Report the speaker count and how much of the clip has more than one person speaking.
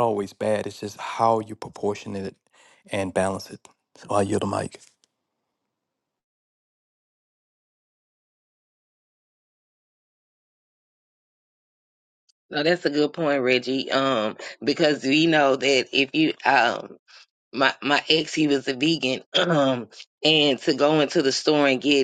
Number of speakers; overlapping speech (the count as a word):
two, no overlap